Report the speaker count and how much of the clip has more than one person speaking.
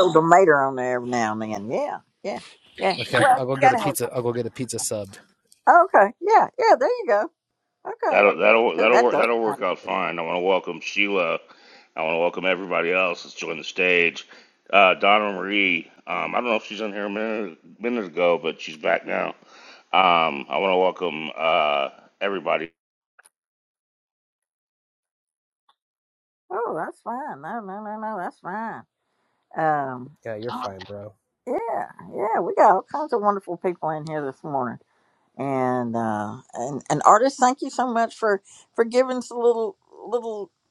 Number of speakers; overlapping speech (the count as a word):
three, about 5%